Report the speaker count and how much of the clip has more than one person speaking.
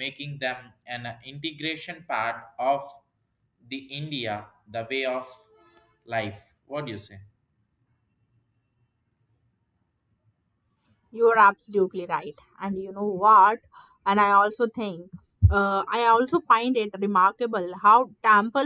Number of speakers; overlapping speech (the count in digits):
2, no overlap